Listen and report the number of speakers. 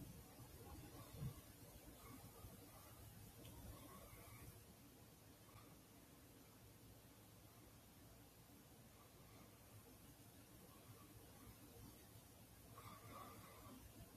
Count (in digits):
0